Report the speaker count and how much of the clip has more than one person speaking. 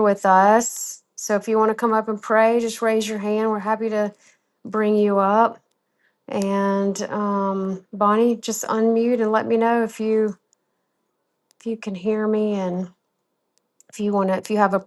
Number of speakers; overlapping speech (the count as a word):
one, no overlap